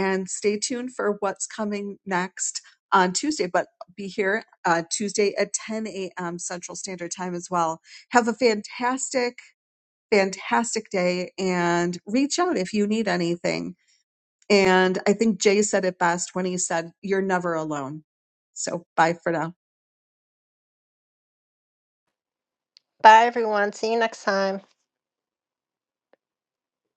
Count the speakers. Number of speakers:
2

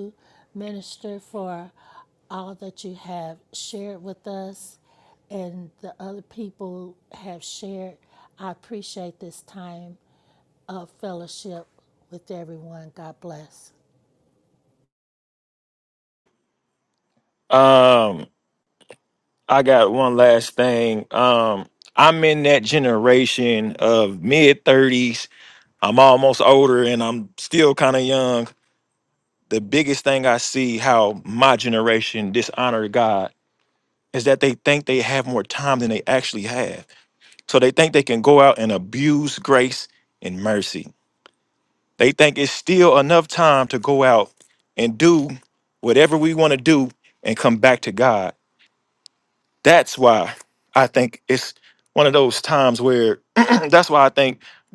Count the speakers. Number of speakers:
2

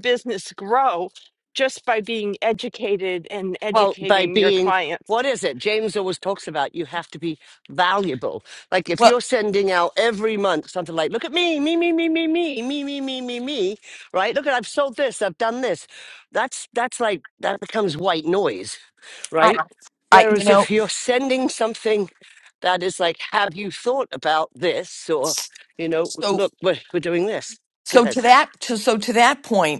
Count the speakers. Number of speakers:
3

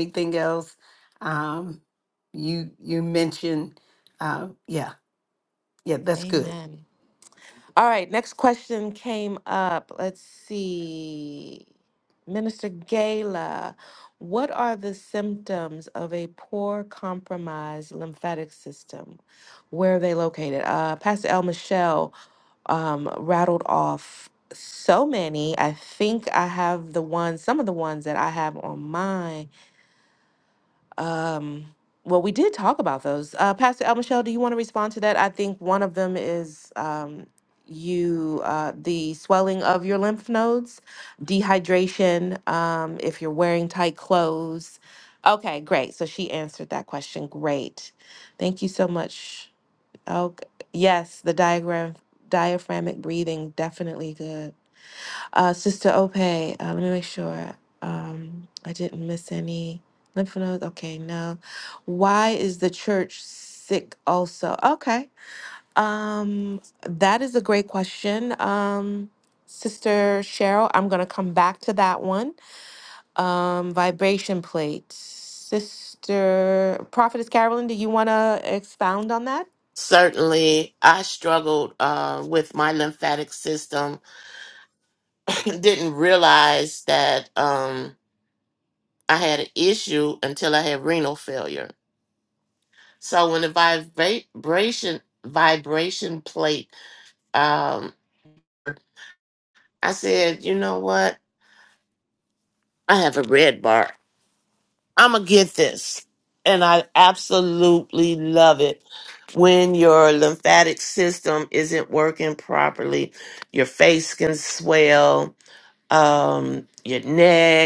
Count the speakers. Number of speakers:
3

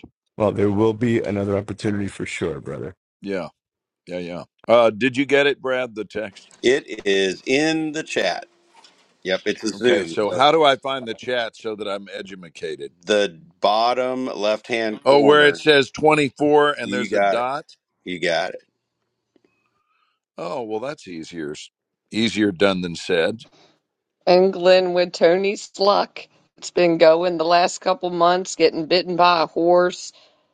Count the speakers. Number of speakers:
4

